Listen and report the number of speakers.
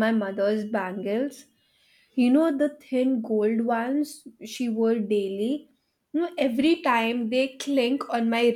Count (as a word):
one